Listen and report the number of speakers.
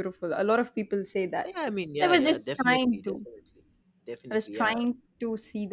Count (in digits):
2